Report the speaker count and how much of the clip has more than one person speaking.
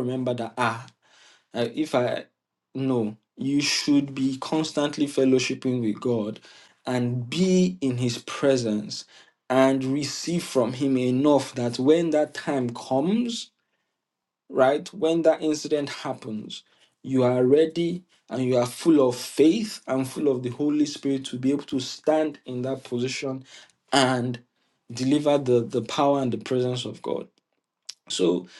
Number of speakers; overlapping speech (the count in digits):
1, no overlap